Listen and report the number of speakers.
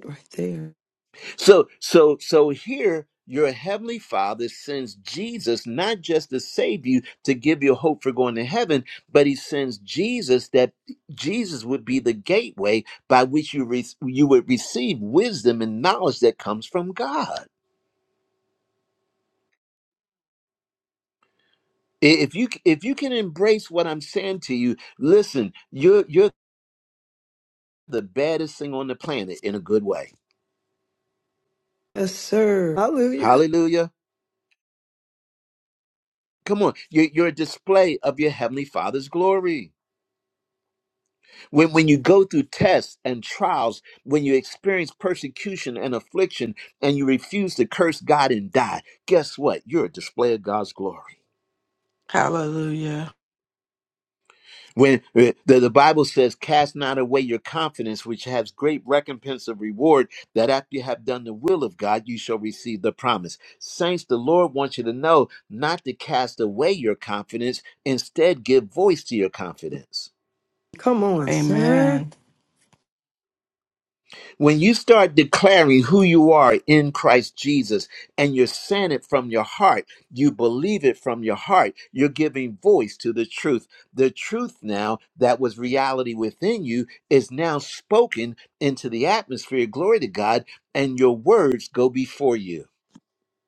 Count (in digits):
3